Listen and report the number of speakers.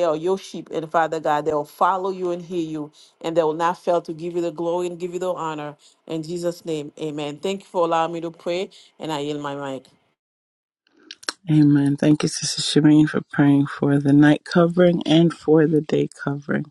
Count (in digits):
2